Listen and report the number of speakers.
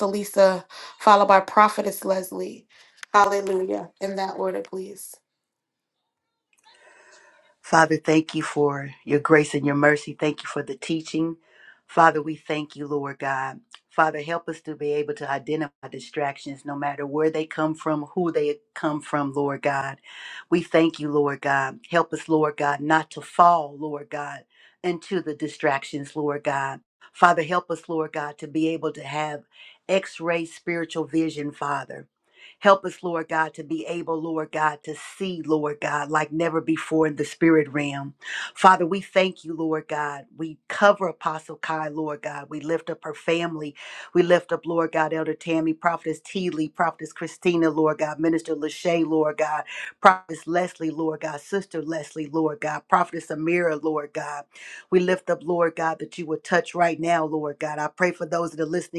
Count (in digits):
2